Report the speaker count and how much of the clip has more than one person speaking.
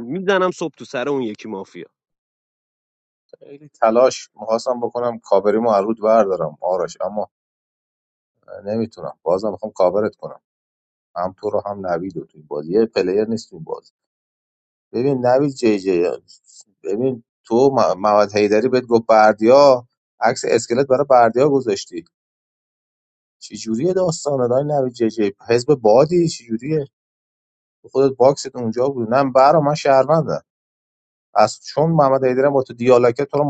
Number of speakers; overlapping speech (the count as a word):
two, no overlap